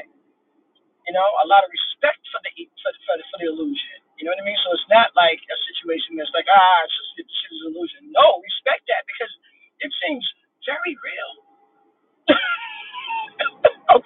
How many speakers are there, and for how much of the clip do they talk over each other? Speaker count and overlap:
one, no overlap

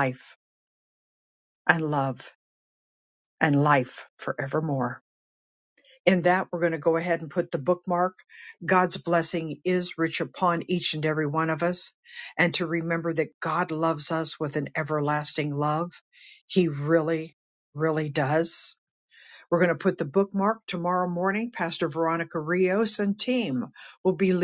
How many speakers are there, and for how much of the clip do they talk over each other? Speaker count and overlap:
one, no overlap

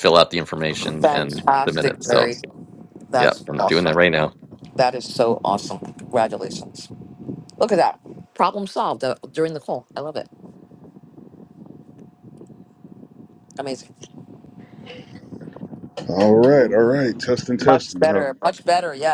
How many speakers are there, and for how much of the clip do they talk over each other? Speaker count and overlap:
three, about 15%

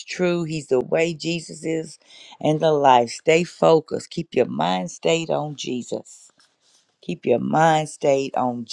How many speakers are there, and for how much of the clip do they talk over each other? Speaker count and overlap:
one, no overlap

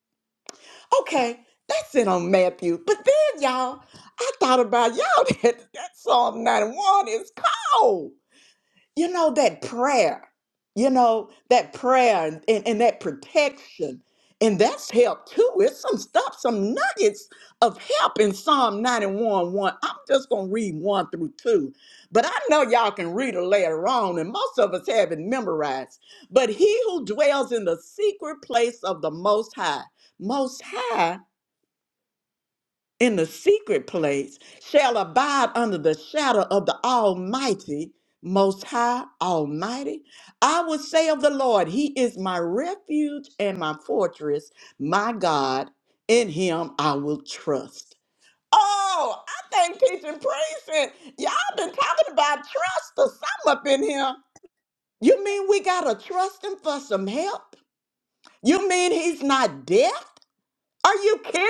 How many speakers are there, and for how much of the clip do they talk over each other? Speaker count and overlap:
one, no overlap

